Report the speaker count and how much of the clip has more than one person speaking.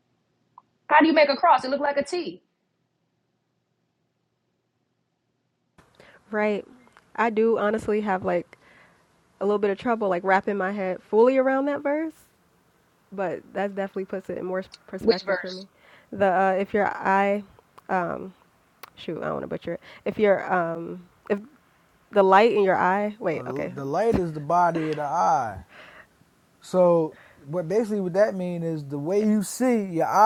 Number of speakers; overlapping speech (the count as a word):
three, about 3%